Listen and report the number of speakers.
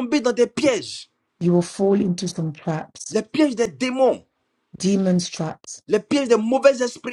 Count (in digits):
2